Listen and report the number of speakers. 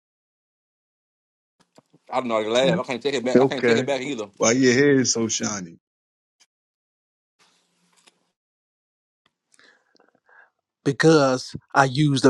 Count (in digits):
3